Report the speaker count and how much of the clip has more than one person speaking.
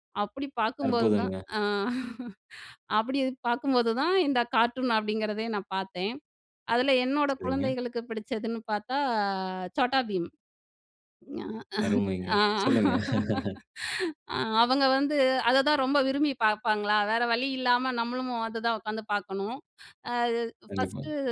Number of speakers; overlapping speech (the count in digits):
2, about 8%